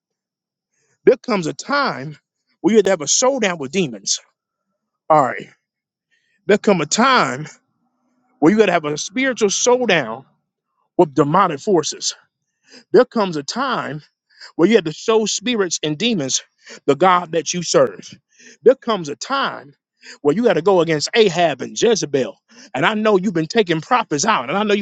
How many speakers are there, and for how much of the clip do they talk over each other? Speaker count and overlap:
1, no overlap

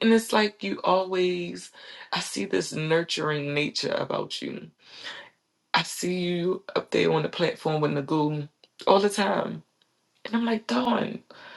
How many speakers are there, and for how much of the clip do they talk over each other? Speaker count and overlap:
1, no overlap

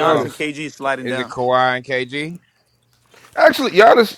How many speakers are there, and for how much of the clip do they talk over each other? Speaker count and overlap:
3, about 14%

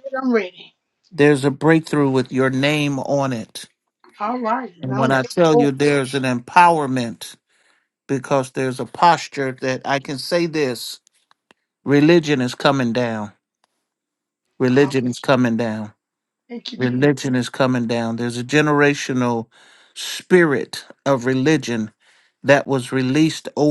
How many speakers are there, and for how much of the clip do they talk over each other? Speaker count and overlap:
2, about 5%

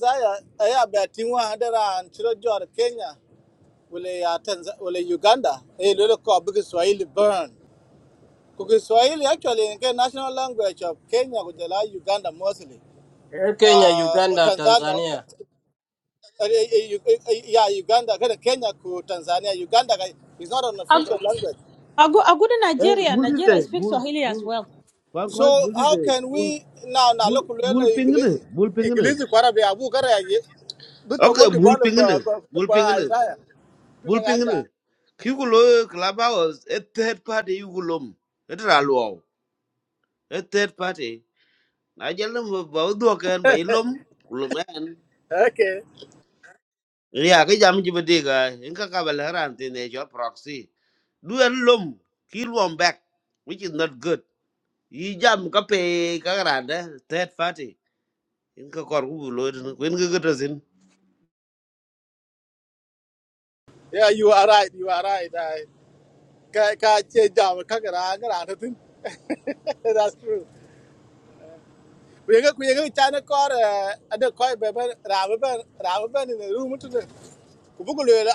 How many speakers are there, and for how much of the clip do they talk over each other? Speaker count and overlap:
4, about 11%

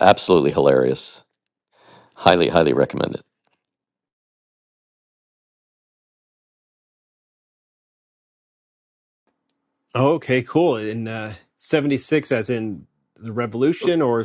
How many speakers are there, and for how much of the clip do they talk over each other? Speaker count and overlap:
2, no overlap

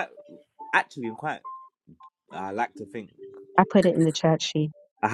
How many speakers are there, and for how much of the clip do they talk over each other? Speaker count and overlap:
2, no overlap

